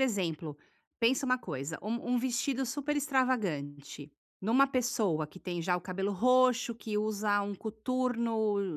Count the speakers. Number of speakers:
one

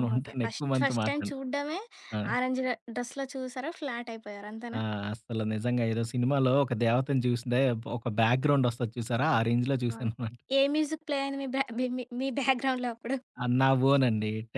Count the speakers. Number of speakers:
two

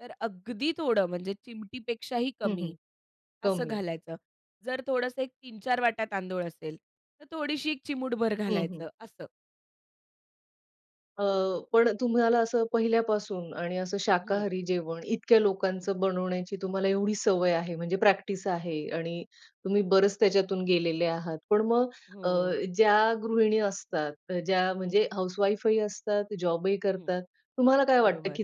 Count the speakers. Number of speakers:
two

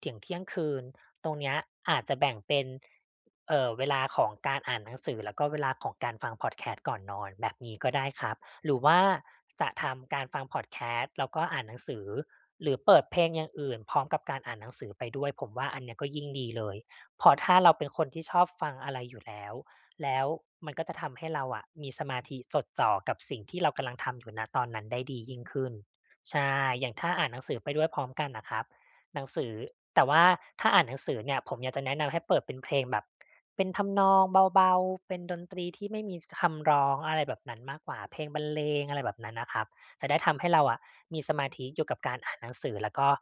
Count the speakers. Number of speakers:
one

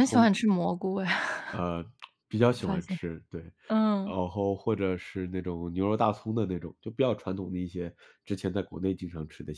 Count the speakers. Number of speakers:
two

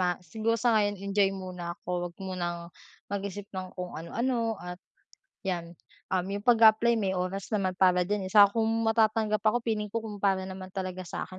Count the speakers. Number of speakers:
one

